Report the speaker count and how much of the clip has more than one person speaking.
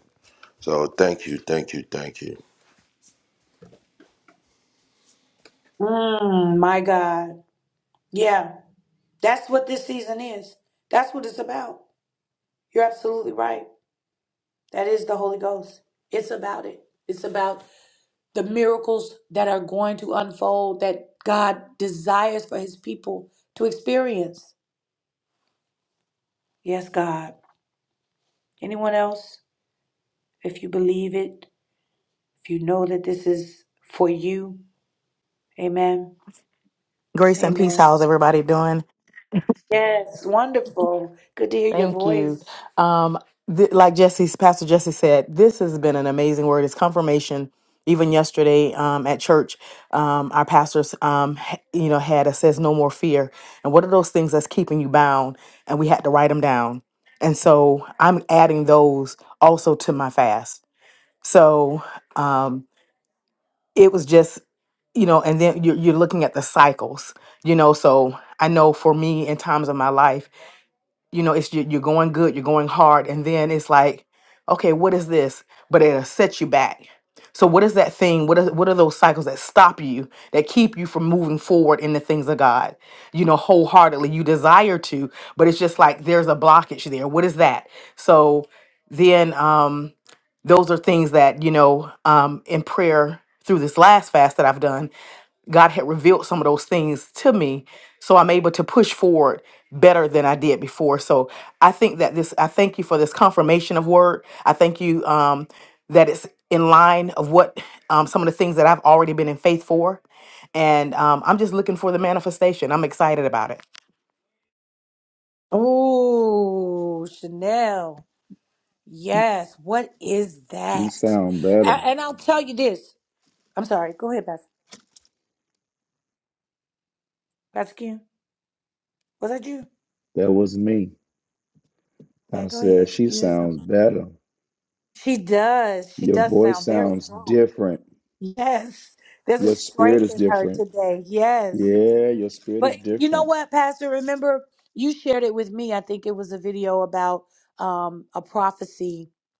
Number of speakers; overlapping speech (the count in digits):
4, about 4%